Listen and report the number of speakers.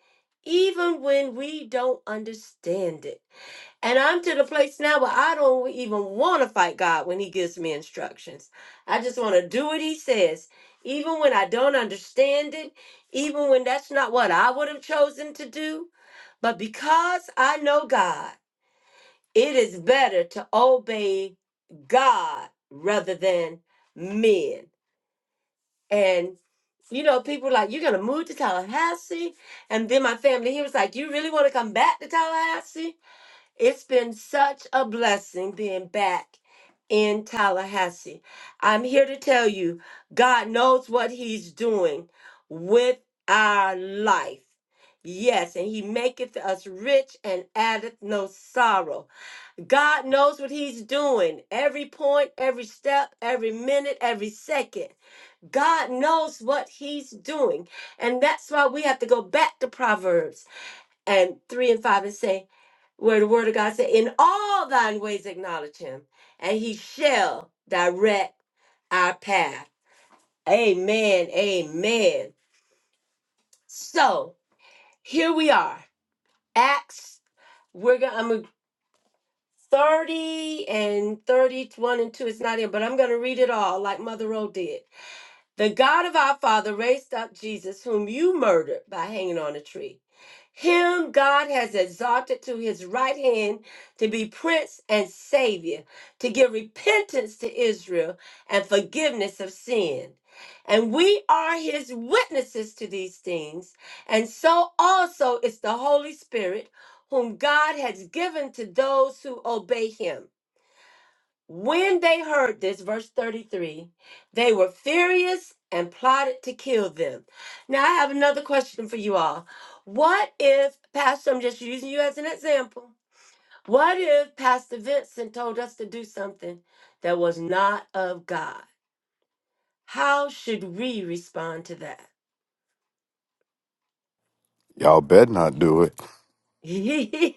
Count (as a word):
two